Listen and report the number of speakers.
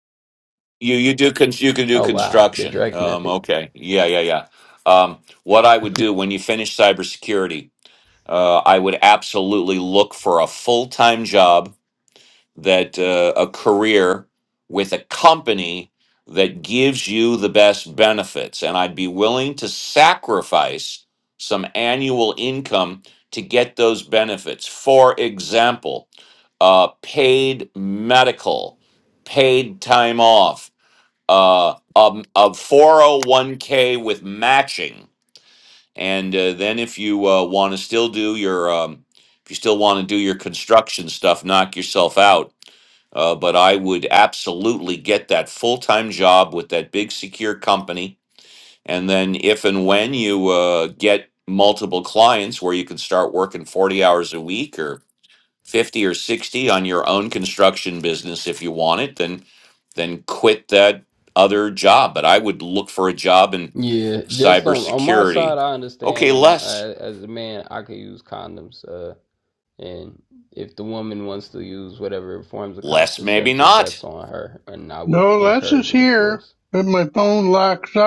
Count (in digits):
3